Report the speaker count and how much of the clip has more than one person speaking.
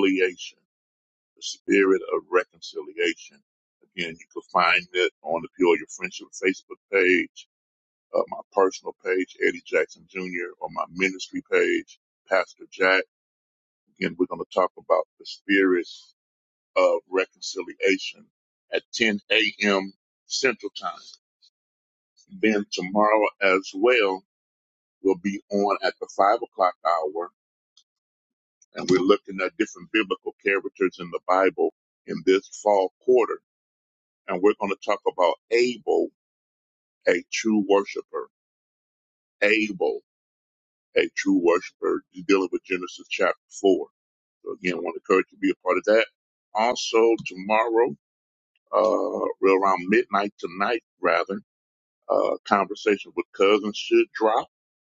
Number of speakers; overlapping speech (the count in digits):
1, no overlap